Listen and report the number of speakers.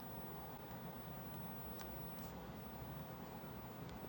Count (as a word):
zero